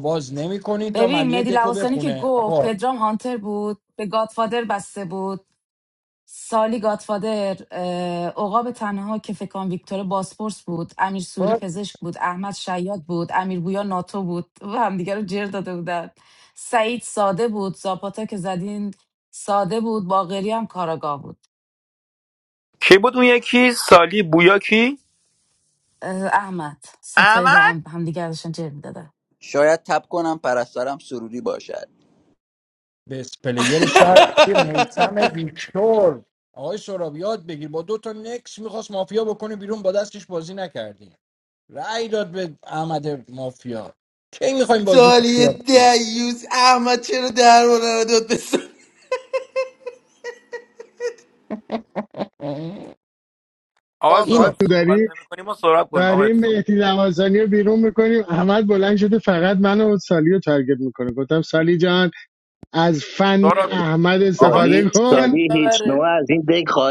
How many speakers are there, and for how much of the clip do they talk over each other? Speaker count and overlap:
7, about 9%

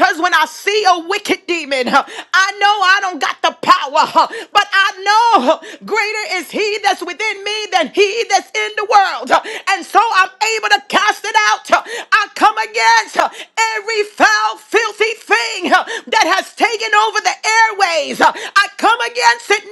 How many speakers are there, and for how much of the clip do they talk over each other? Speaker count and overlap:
1, no overlap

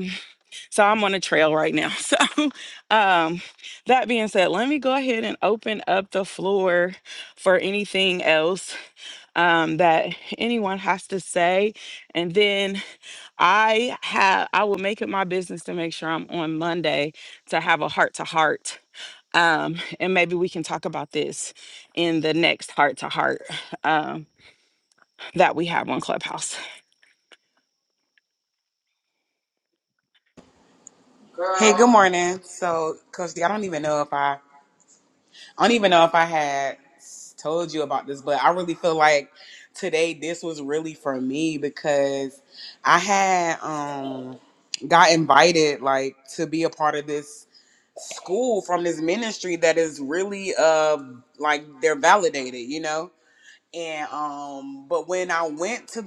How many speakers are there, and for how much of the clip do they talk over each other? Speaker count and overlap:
2, no overlap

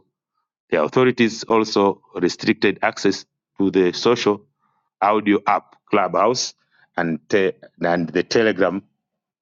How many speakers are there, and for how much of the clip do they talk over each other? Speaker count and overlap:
1, no overlap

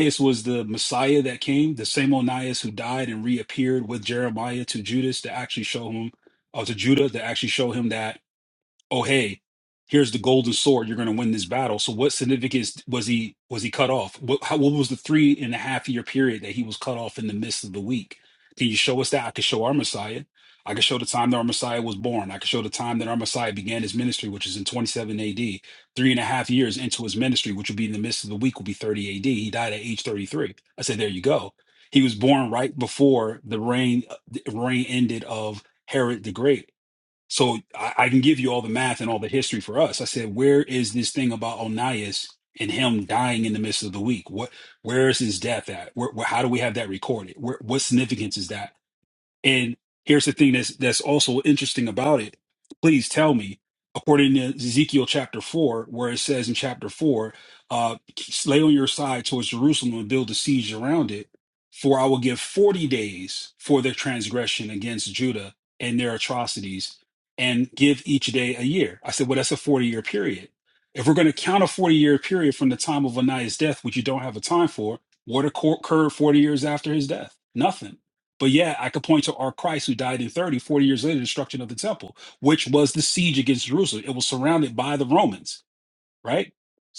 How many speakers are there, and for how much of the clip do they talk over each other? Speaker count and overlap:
1, no overlap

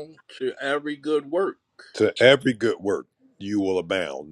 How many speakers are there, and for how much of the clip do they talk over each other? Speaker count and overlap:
2, no overlap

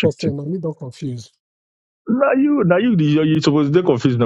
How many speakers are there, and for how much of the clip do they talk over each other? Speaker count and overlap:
2, about 7%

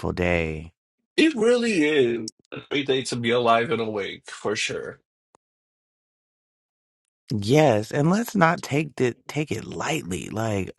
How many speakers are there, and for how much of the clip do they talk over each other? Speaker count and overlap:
2, no overlap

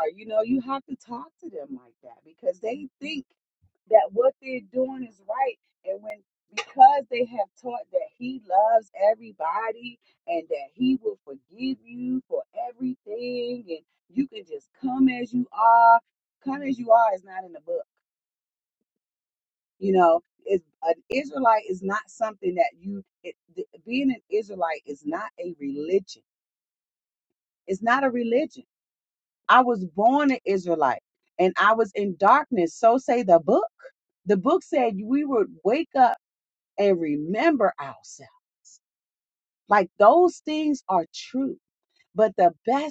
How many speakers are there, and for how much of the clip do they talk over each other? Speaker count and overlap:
1, no overlap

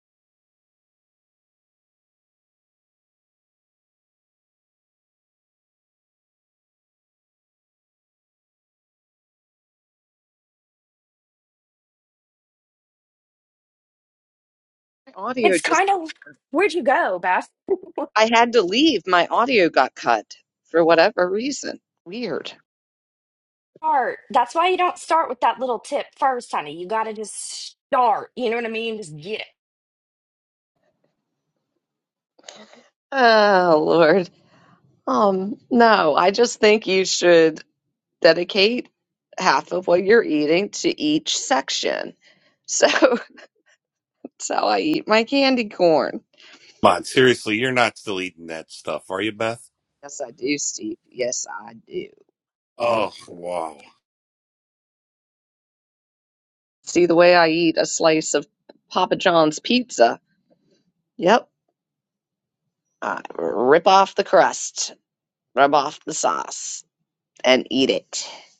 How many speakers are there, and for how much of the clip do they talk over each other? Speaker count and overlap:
3, under 1%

